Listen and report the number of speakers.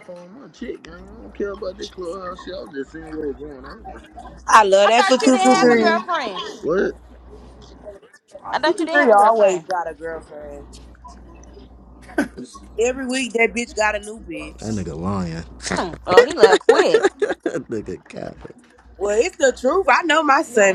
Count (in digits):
4